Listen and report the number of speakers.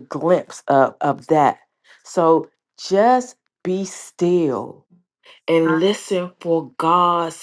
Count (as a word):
one